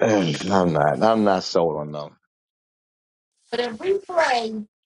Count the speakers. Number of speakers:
2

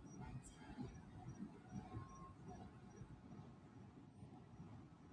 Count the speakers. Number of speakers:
0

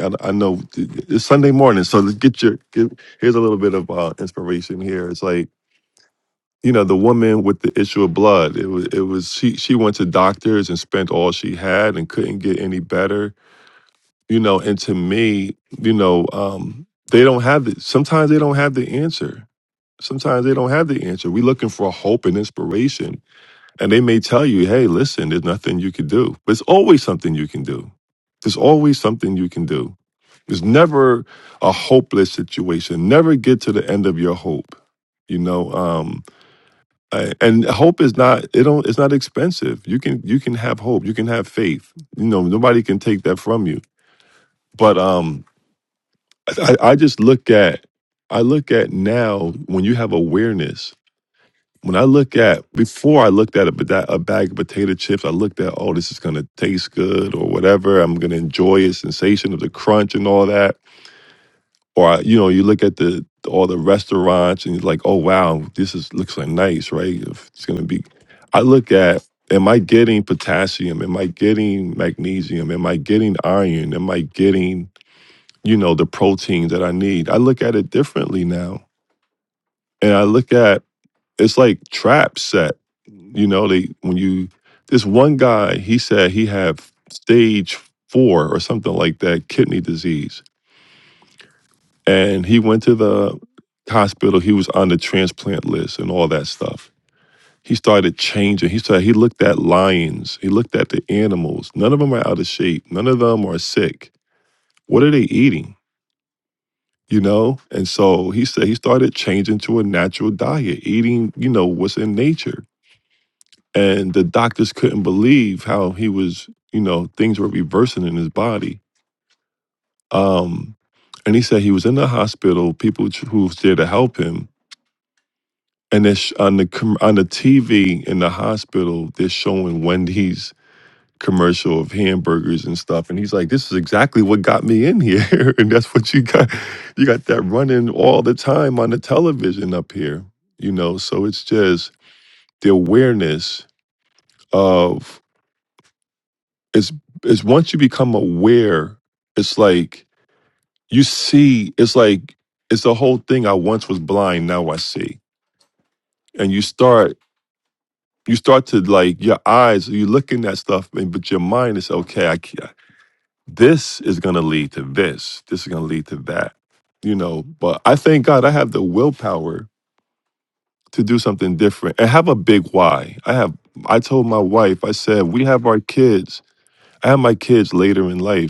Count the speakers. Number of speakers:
1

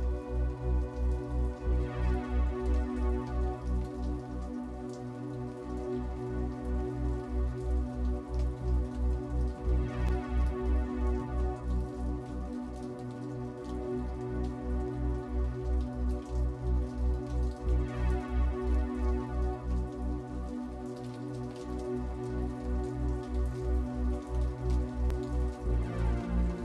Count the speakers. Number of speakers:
0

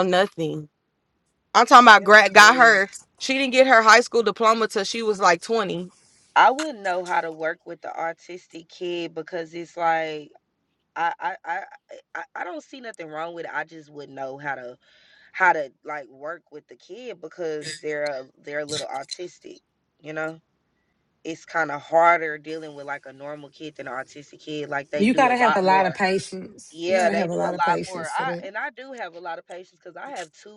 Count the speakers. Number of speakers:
3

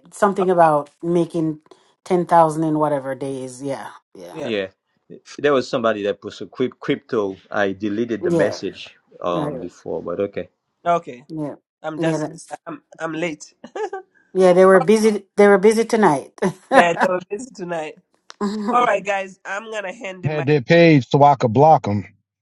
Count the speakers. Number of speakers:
4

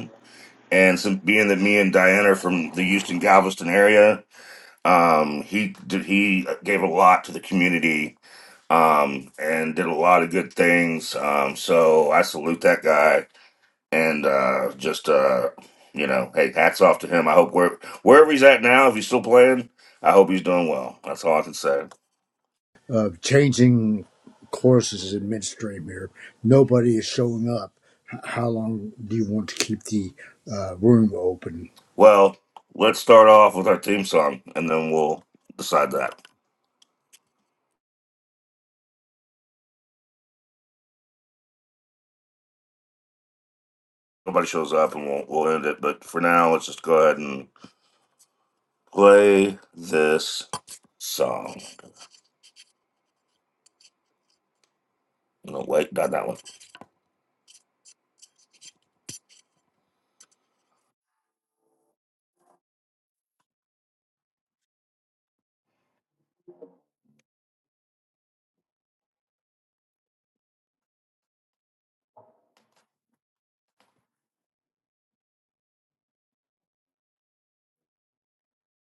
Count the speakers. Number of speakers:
2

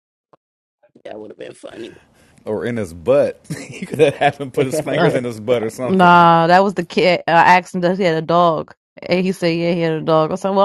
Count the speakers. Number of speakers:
3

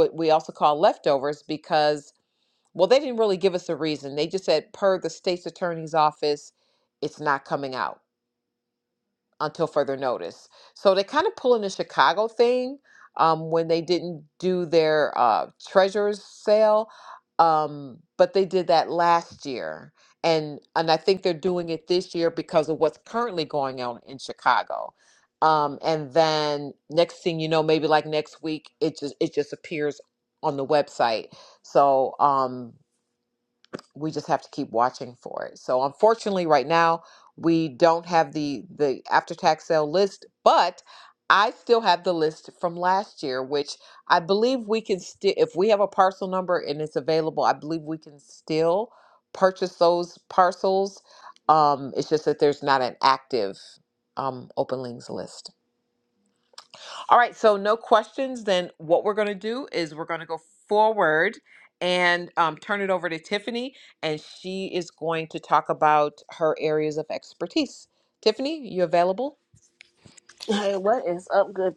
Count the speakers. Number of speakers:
2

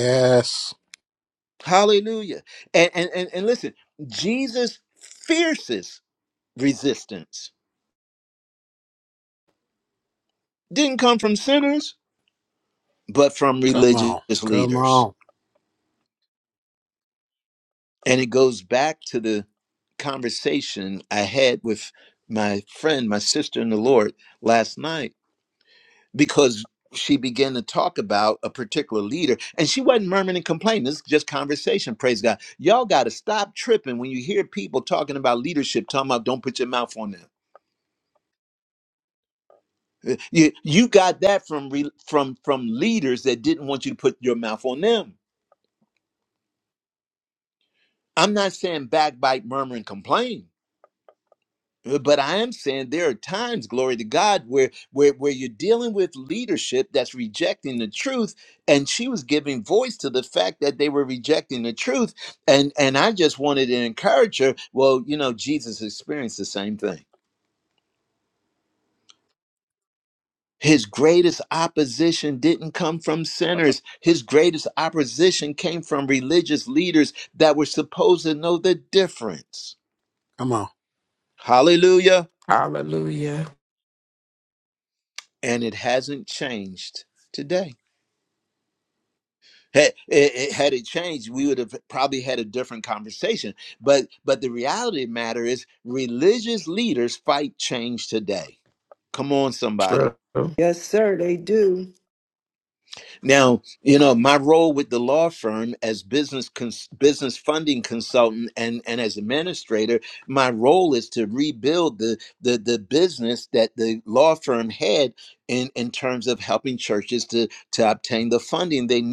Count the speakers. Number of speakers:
4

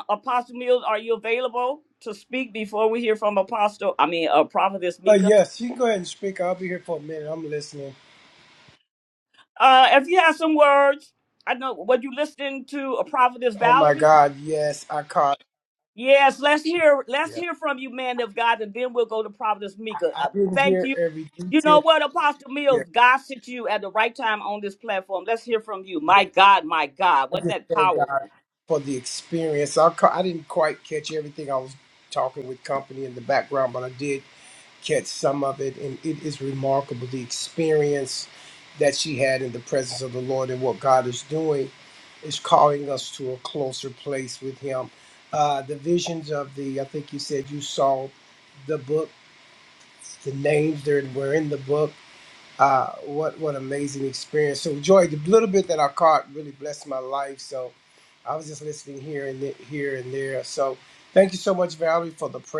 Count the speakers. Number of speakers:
2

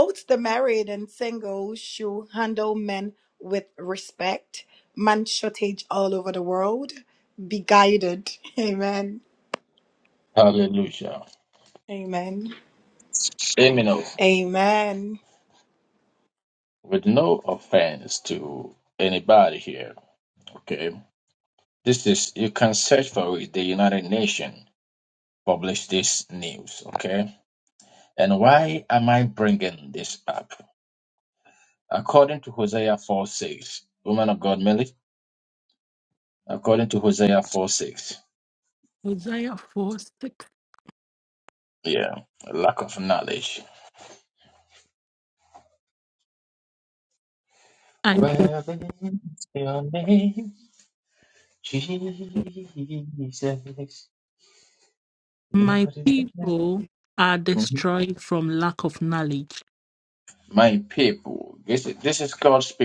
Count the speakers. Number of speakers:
3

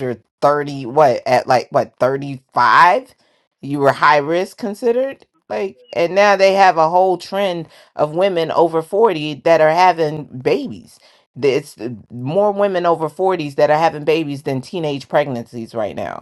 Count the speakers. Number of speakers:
1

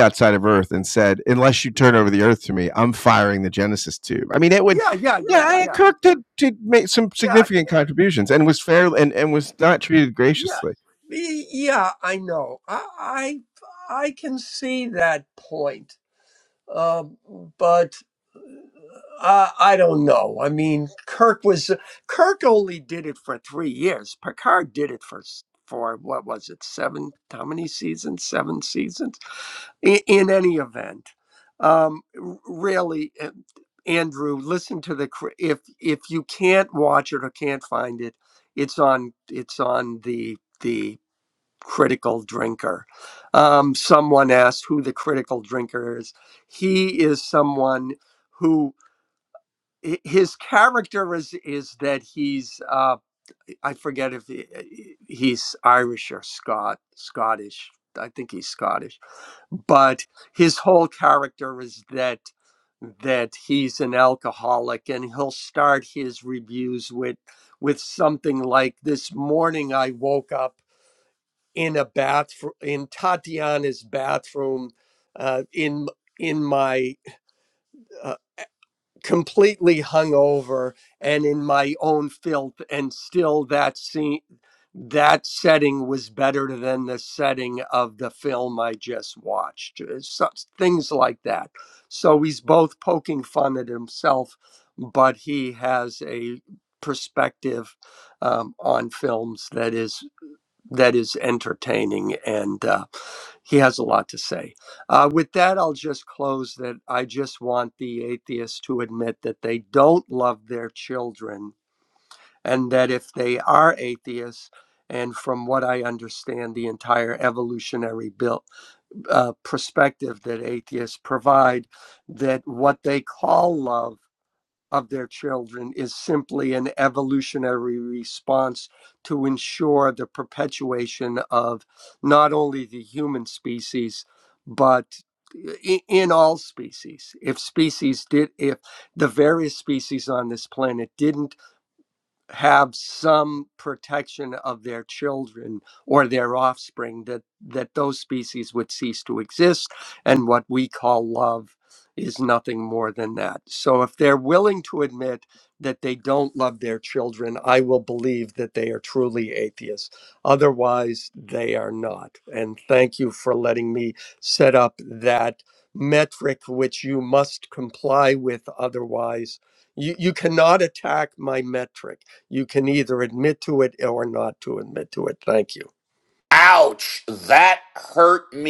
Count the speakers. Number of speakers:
3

